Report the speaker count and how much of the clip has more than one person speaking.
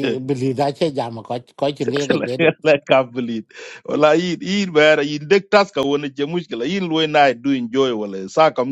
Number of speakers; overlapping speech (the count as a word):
two, no overlap